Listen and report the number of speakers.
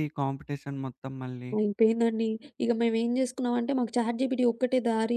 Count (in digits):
2